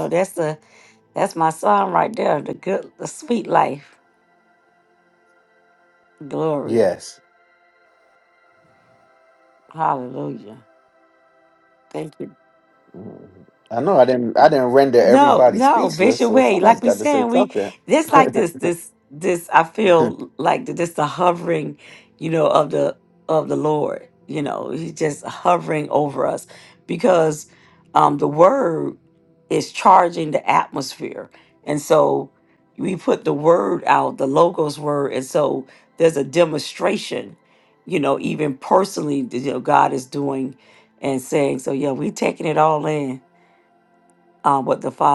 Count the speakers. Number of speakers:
2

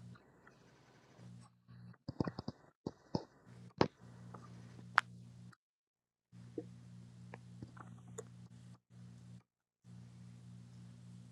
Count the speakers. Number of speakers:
0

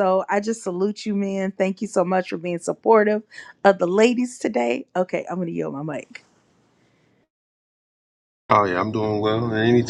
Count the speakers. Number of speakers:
2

